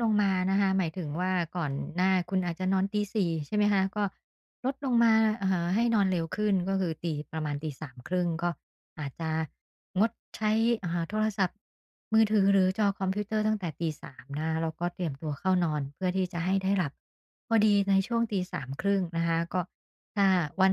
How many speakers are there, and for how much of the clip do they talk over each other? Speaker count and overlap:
1, no overlap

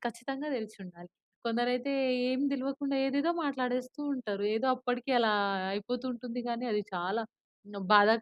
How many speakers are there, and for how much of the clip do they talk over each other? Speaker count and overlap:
1, no overlap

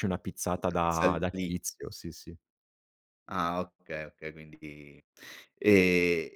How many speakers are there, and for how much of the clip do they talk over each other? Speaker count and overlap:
2, about 15%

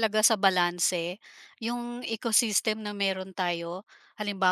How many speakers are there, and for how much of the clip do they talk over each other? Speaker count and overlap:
1, no overlap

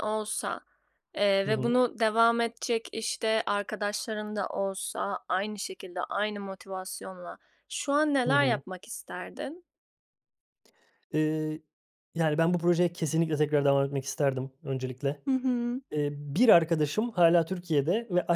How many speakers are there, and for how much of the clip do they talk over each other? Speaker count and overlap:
2, about 3%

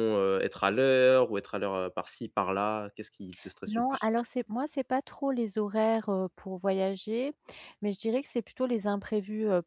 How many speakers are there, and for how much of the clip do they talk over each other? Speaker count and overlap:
2, about 4%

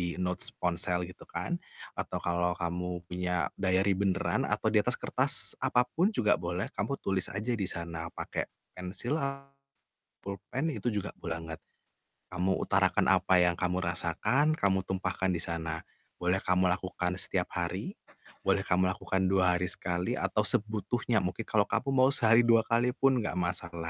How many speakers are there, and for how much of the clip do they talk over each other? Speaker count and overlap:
1, no overlap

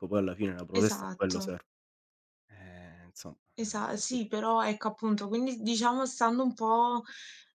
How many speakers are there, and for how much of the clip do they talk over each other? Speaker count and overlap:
2, about 11%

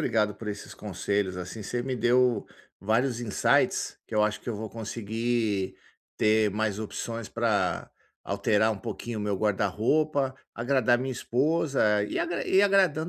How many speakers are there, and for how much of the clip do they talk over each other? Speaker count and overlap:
1, no overlap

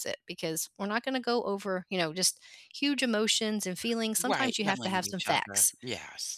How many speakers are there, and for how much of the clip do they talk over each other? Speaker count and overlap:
2, about 24%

